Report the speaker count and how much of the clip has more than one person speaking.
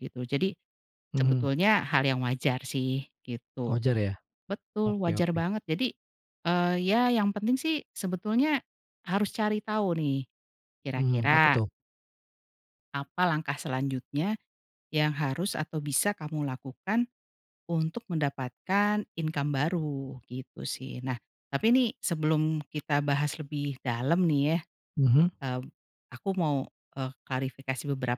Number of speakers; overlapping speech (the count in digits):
2, about 5%